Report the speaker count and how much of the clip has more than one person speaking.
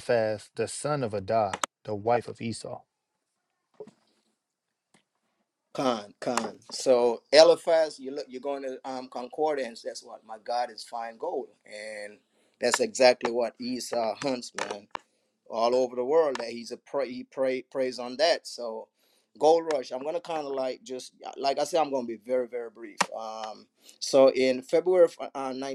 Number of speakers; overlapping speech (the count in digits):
2, no overlap